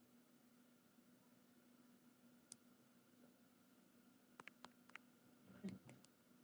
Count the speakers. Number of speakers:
0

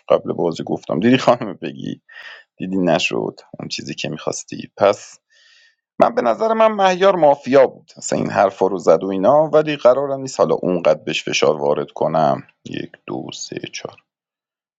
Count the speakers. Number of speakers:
1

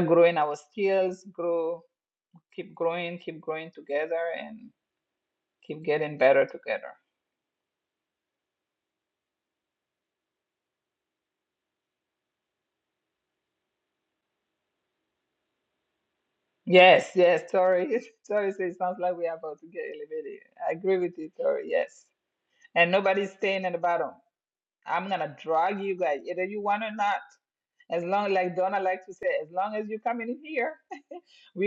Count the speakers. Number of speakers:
1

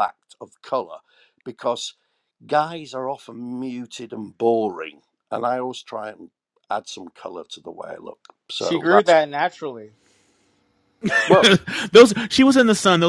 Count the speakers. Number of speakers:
3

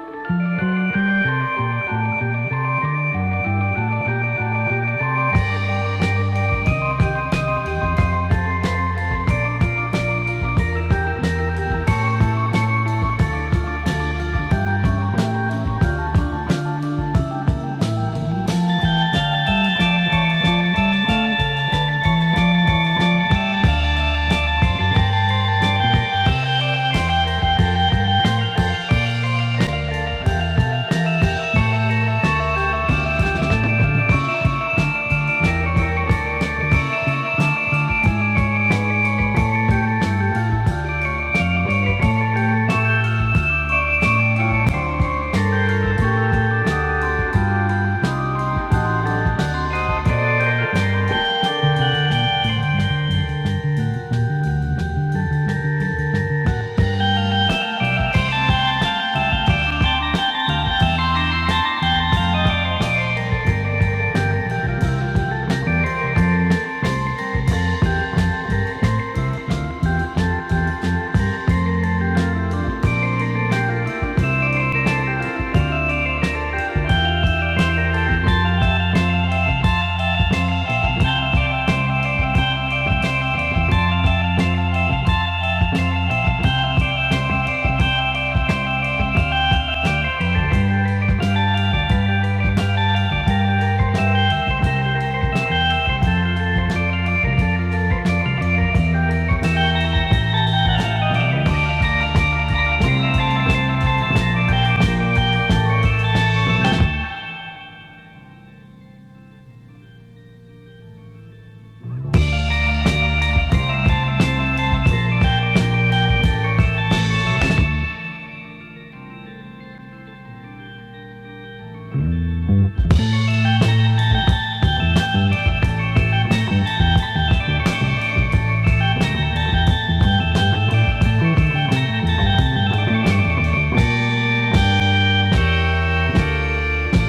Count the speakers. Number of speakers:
0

